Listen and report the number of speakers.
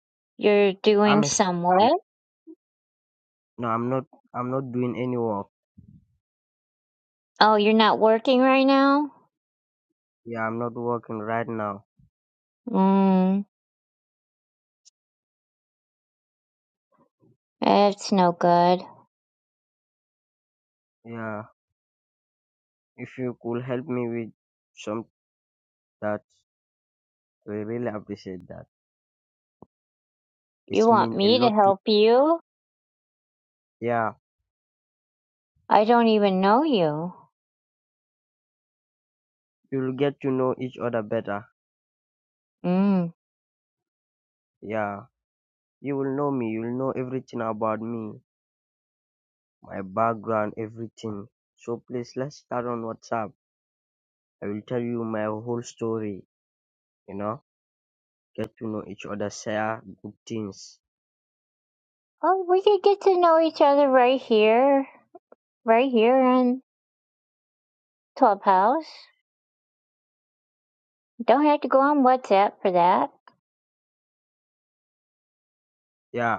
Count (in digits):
2